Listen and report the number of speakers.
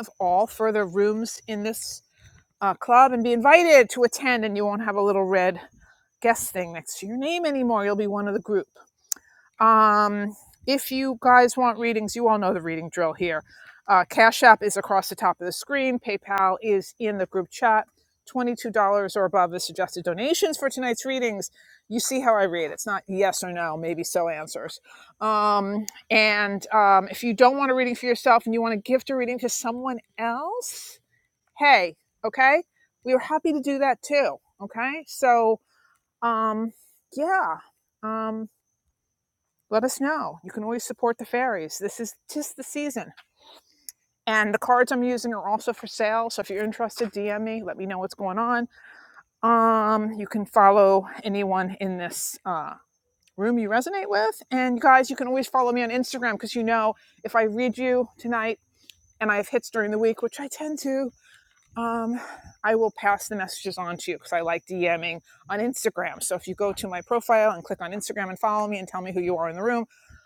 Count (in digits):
1